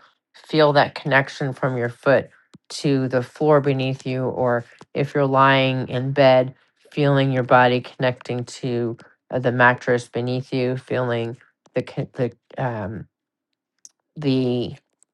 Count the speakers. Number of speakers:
one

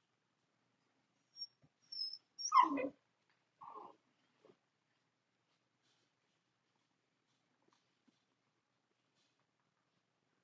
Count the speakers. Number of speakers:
zero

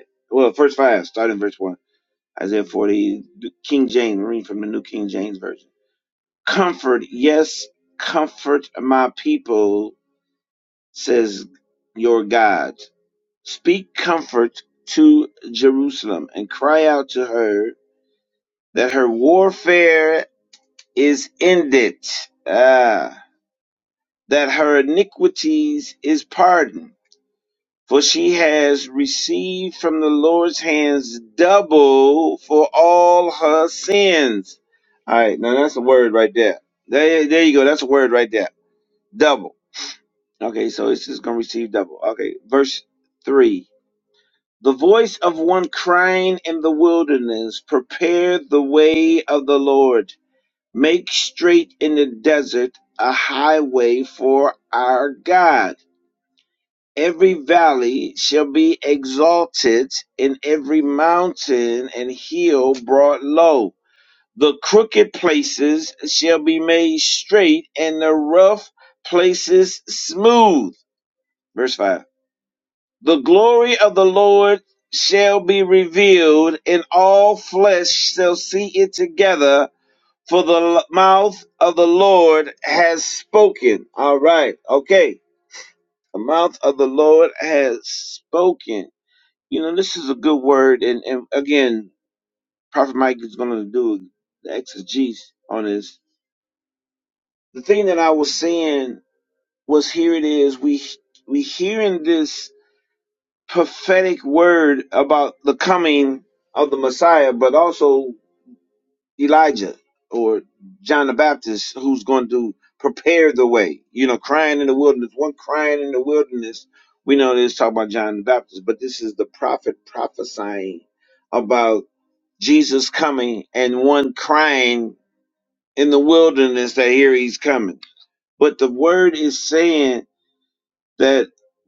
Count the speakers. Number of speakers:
one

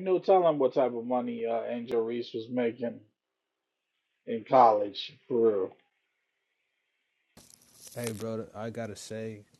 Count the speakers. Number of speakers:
two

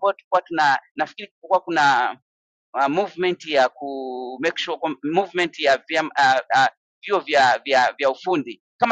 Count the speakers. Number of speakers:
one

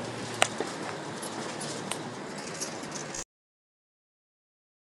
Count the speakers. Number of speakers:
zero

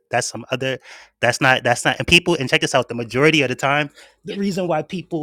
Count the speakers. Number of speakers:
one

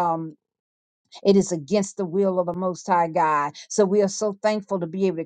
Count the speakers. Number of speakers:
one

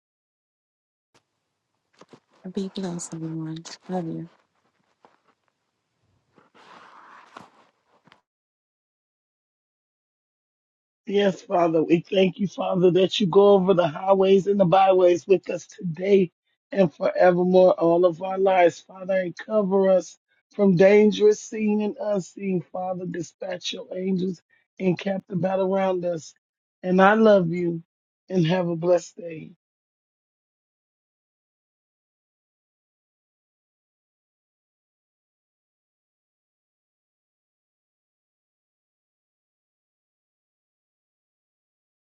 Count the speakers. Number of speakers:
two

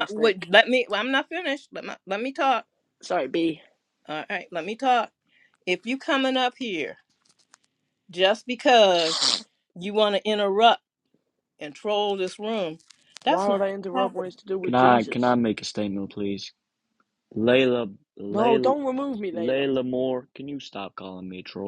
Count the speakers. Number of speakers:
three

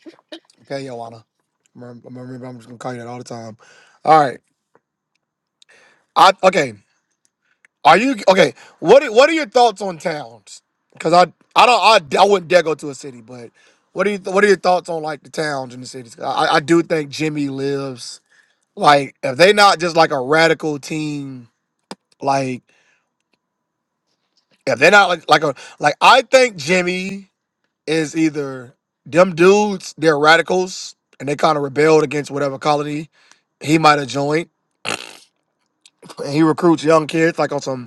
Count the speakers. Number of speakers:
one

